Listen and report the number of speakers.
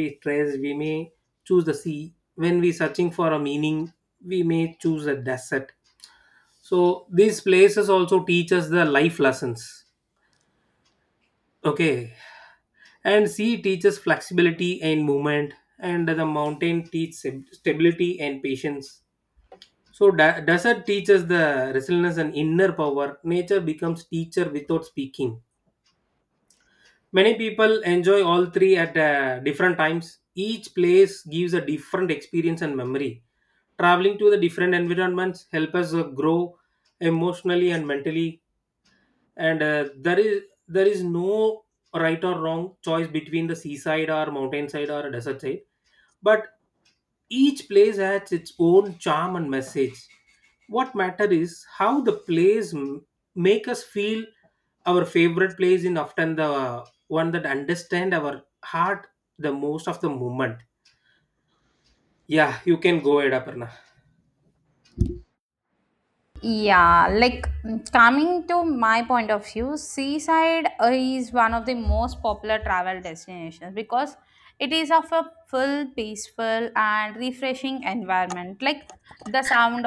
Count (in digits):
2